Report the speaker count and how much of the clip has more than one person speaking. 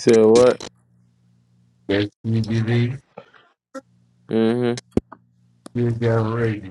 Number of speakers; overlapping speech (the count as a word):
two, no overlap